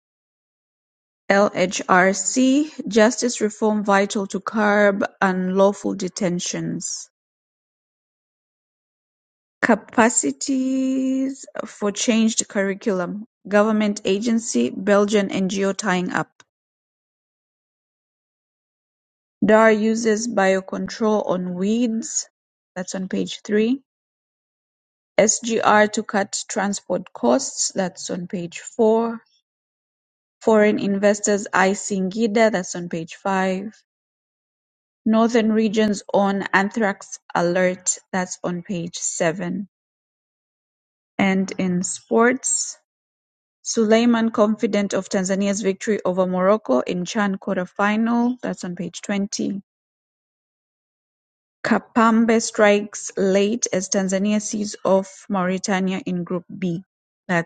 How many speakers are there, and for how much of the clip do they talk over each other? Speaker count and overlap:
one, no overlap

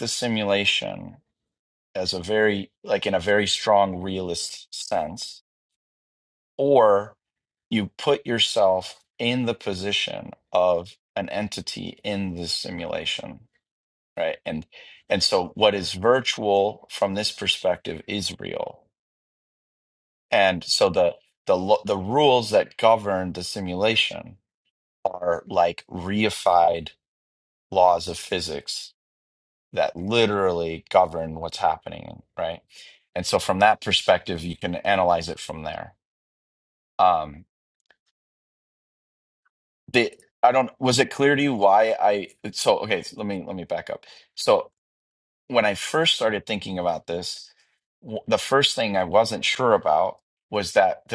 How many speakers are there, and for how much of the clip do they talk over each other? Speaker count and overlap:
one, no overlap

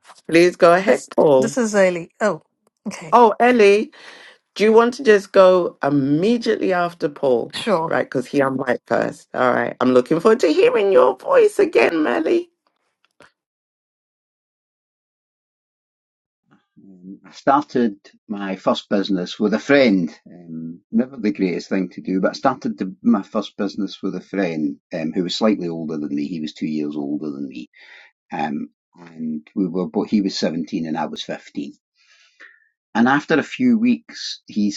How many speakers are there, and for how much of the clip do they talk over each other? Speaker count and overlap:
three, about 1%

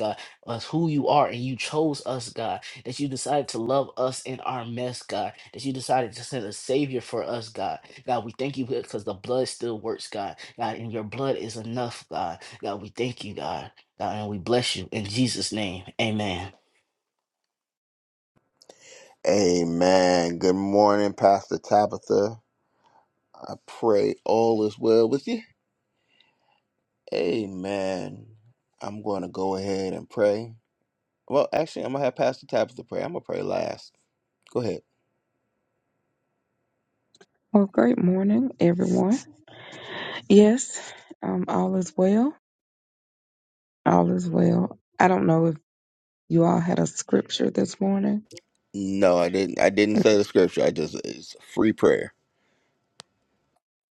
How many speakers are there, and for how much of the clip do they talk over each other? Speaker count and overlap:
three, no overlap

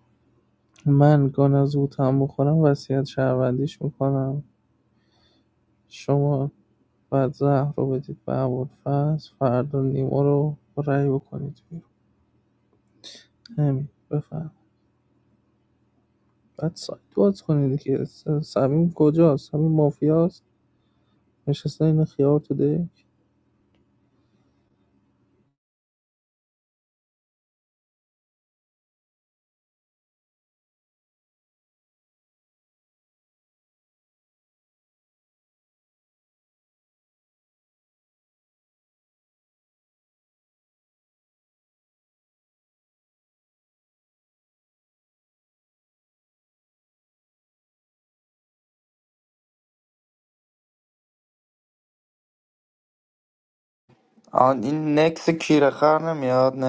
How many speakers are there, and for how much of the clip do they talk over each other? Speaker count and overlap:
two, no overlap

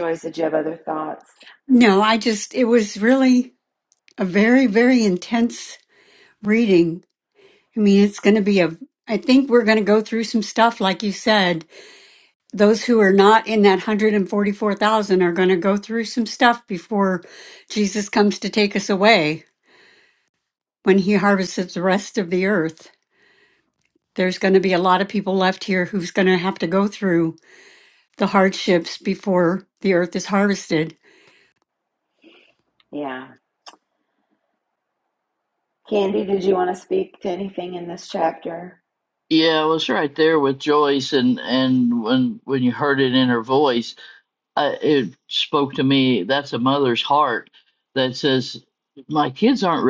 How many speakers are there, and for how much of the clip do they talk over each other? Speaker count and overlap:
three, no overlap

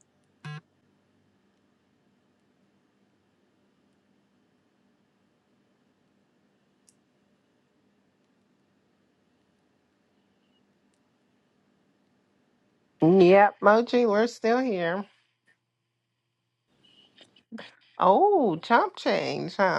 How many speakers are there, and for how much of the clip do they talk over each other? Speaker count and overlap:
one, no overlap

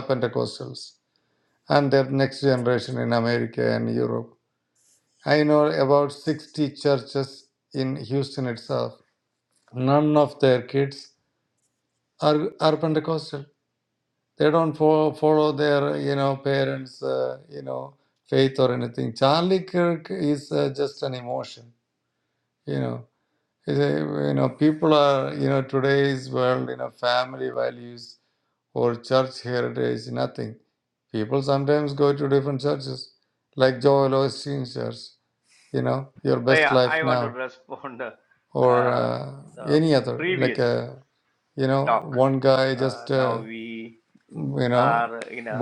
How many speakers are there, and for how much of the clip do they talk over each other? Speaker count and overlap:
two, about 8%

